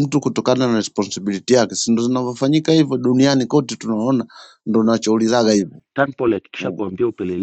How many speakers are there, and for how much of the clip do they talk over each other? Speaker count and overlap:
two, about 2%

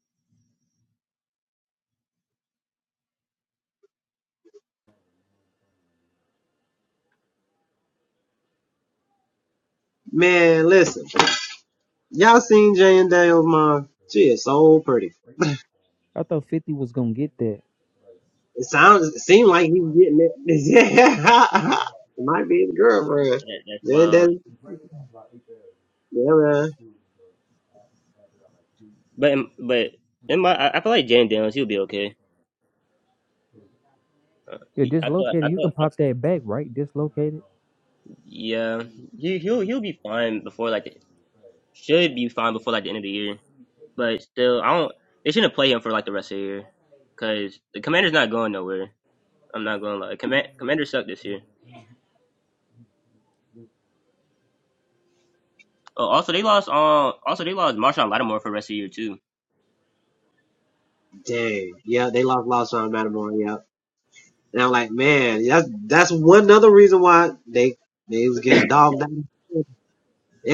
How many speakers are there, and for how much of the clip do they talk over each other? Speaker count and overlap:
three, about 2%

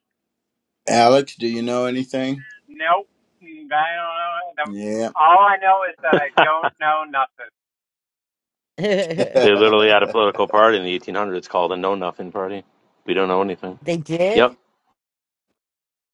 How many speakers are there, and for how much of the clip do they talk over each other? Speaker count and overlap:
four, about 1%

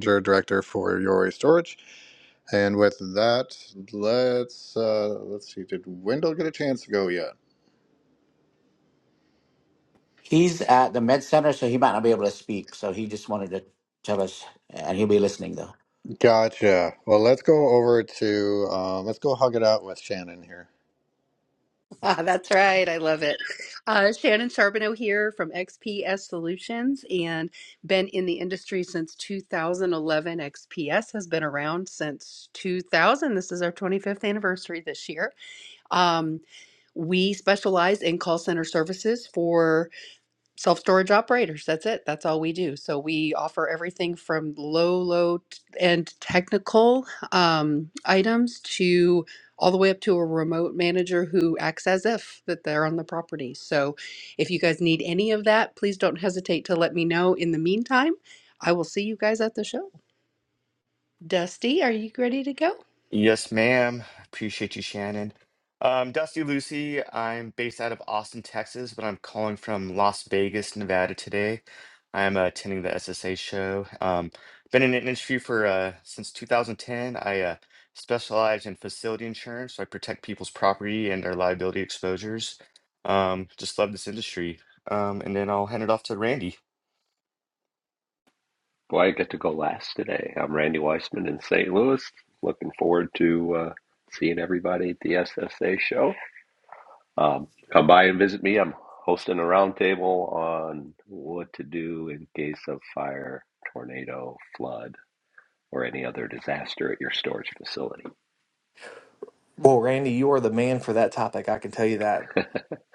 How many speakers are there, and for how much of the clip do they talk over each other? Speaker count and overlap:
six, no overlap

